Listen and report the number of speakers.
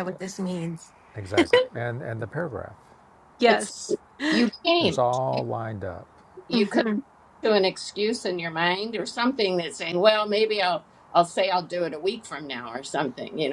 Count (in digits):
3